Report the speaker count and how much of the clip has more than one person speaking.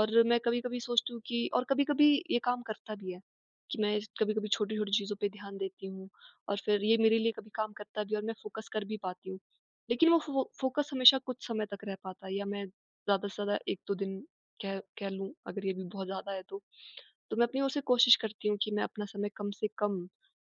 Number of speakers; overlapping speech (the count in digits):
1, no overlap